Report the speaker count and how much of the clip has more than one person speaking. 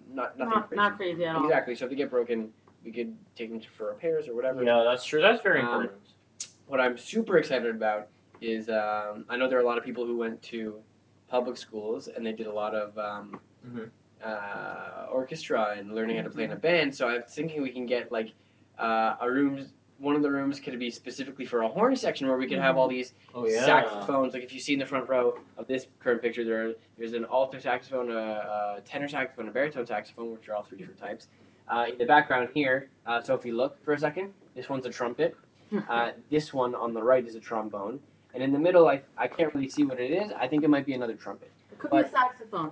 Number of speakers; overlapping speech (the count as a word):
three, about 5%